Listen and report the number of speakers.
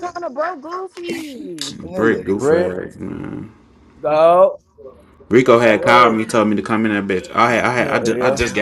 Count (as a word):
three